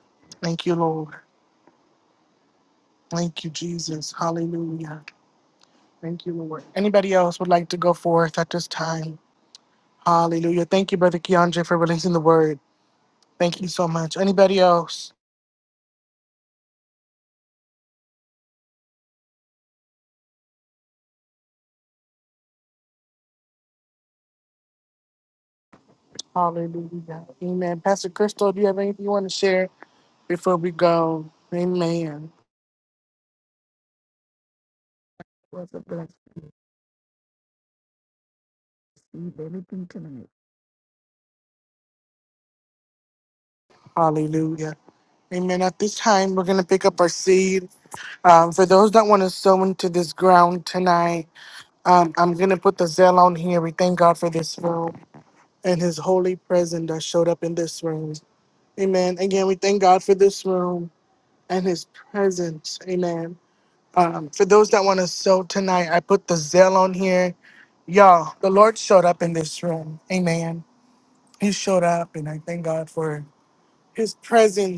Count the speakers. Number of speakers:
two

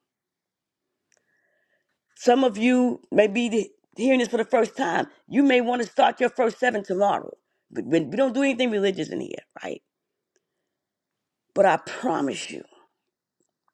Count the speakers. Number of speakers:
one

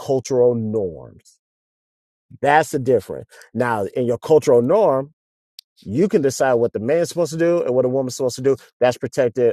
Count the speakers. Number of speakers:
one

